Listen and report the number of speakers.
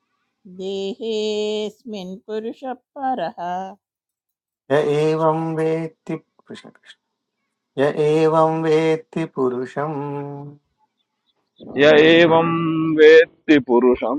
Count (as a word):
three